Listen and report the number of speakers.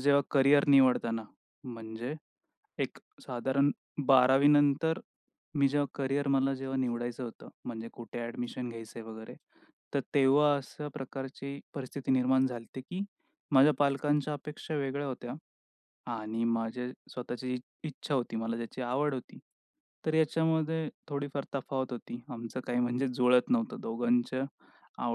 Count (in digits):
1